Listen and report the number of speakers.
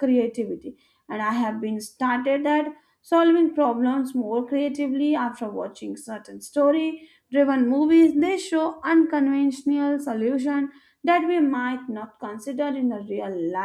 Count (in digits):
1